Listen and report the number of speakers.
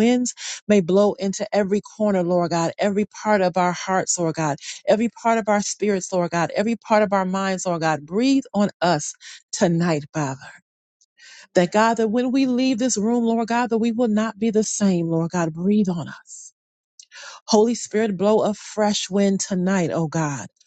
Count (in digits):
1